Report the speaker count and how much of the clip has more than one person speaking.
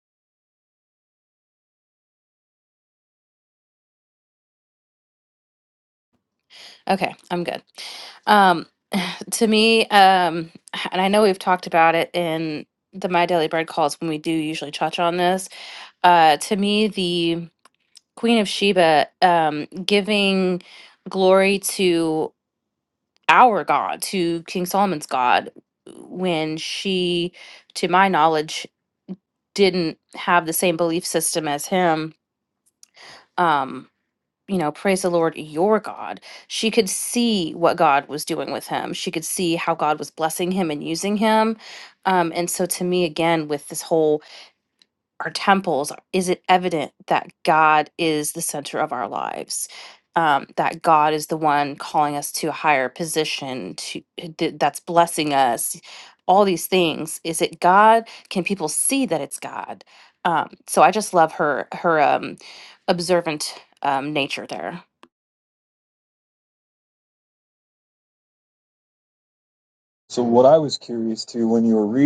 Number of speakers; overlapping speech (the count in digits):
2, no overlap